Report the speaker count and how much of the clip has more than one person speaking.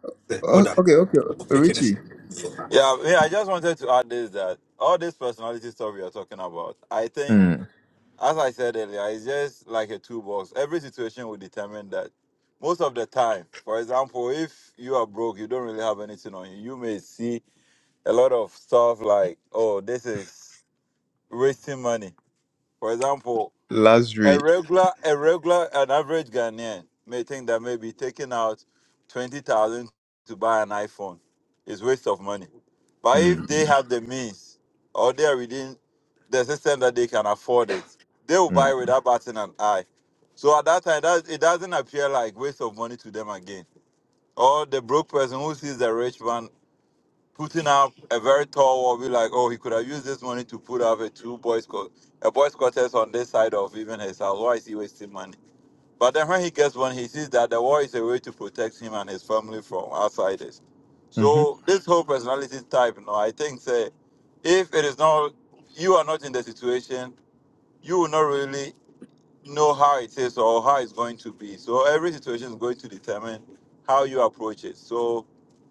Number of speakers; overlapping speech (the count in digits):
2, about 2%